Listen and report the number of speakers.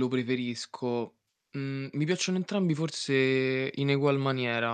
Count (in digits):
1